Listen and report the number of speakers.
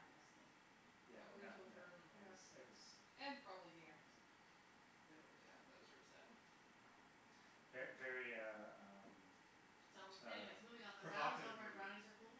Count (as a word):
three